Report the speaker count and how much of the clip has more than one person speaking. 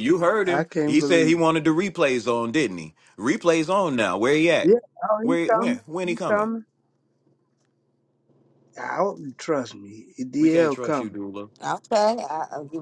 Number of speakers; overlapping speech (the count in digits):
3, about 22%